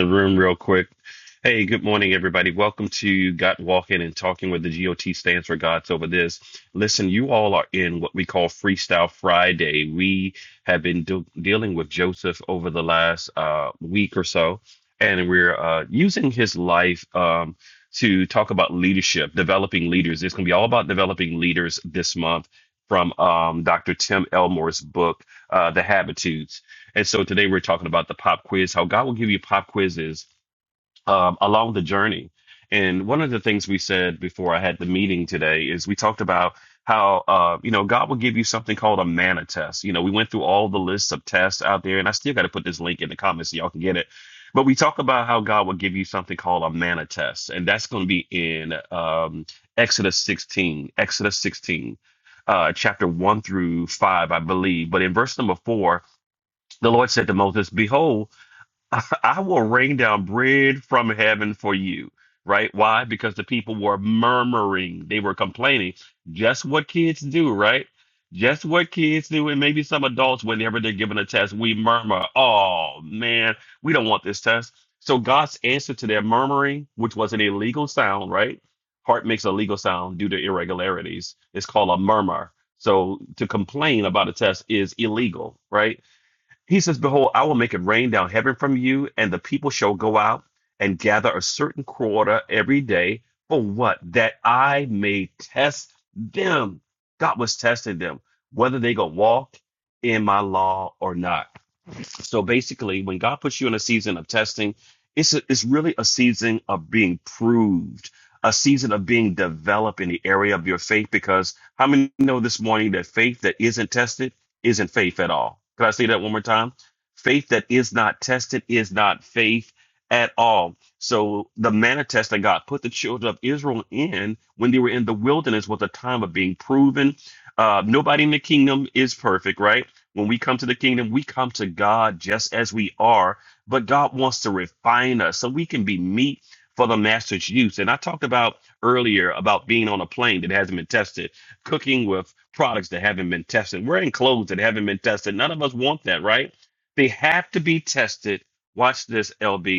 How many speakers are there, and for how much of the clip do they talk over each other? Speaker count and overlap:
1, no overlap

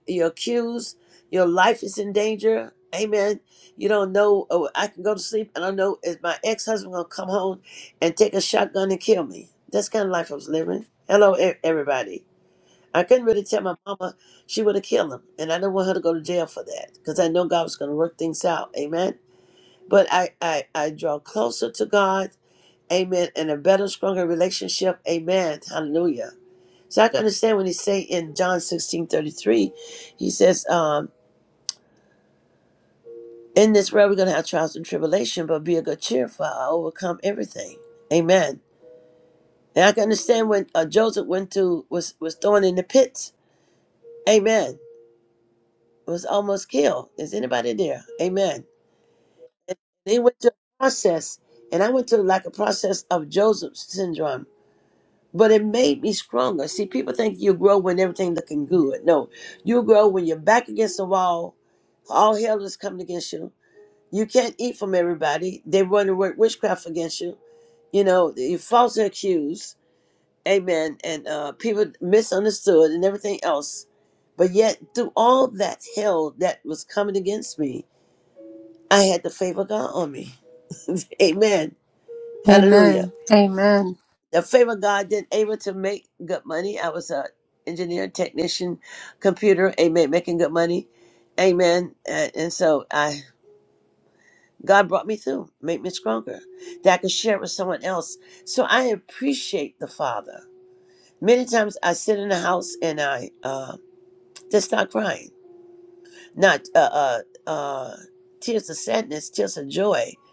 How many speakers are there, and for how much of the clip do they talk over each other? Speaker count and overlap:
2, about 1%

